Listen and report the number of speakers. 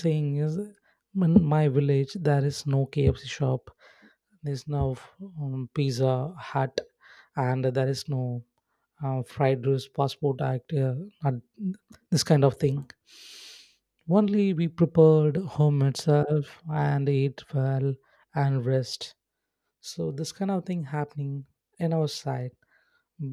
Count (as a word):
one